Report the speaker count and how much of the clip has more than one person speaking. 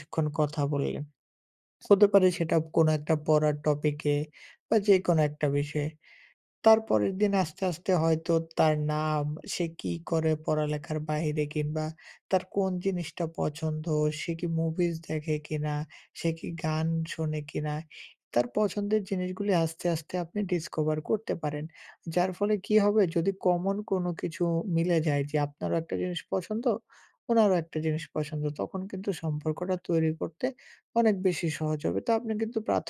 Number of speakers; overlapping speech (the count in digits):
1, no overlap